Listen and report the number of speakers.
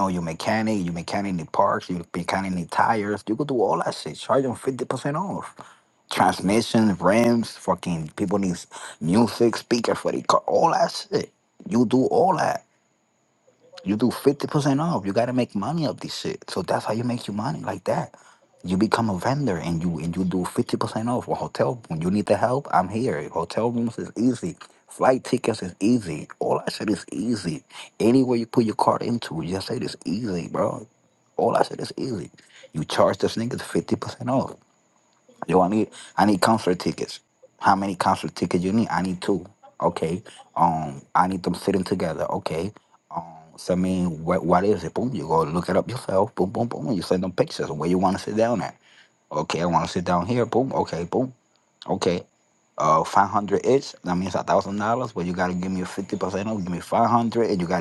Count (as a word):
one